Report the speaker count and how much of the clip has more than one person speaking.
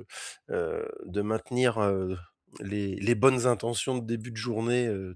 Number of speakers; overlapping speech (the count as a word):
one, no overlap